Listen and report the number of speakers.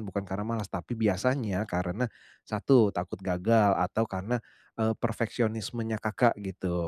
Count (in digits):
1